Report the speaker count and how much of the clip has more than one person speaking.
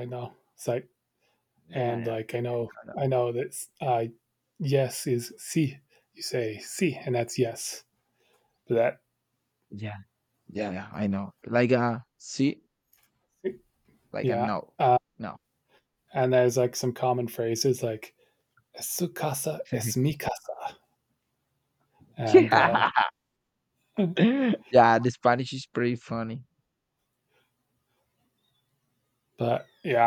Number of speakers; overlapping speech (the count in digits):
2, about 5%